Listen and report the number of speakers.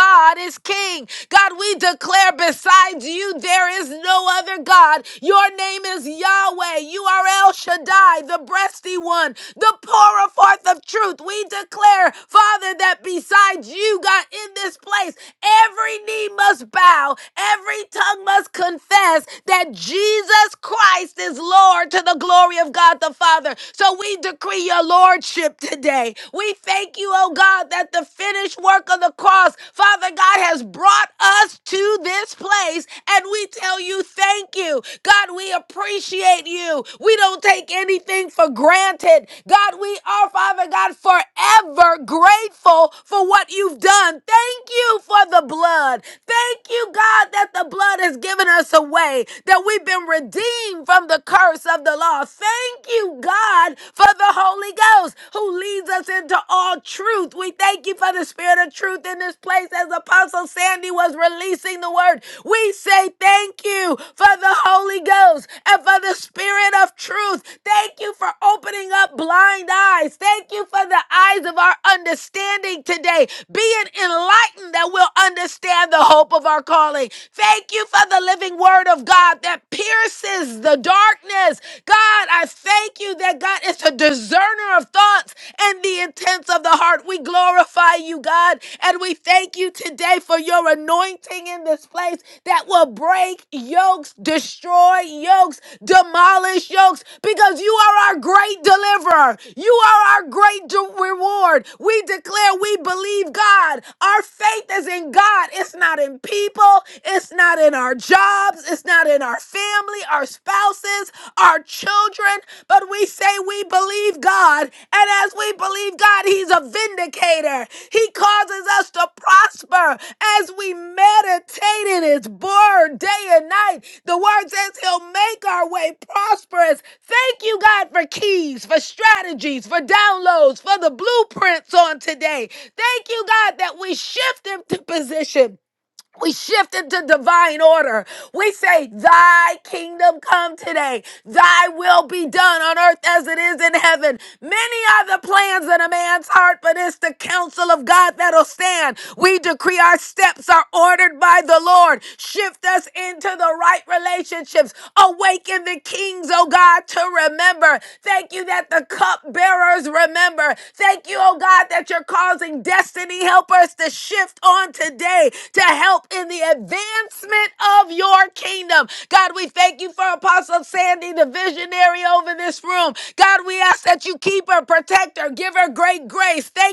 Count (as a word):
one